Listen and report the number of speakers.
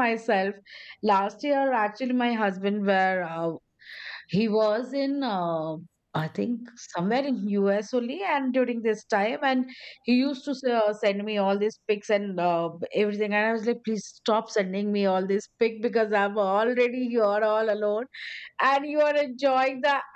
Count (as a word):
one